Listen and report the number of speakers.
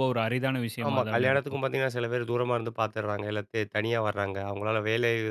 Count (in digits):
2